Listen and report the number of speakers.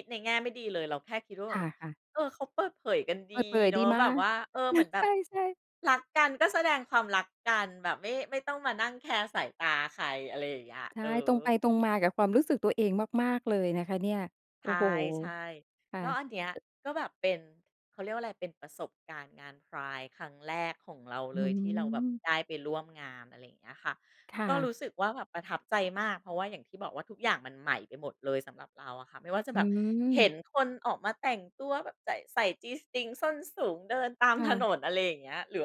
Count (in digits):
2